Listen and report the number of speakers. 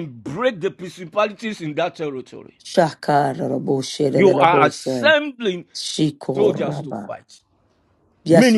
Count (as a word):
two